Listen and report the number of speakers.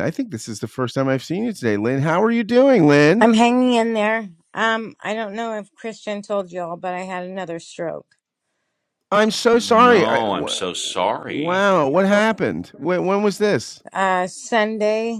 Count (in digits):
3